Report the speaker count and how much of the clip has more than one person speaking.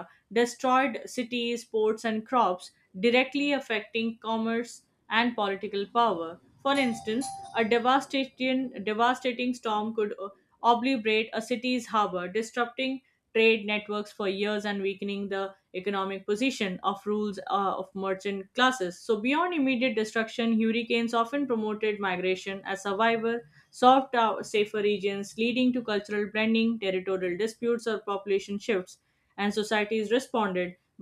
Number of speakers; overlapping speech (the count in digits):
1, no overlap